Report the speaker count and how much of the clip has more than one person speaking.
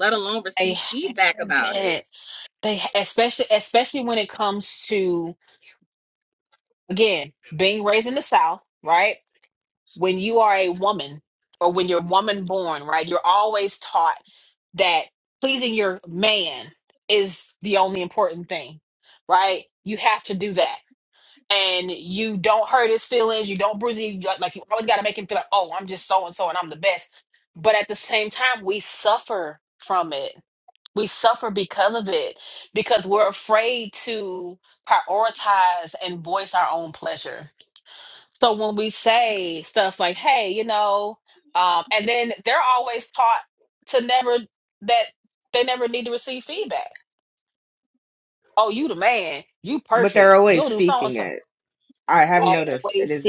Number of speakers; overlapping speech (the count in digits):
3, about 6%